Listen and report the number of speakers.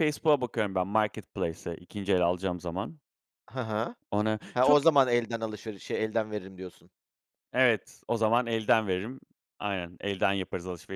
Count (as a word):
two